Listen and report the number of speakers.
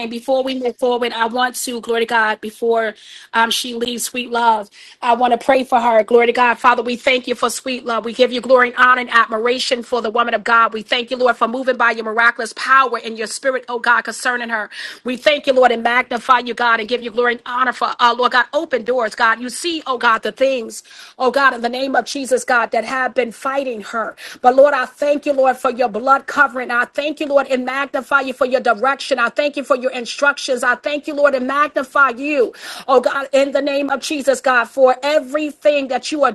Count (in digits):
1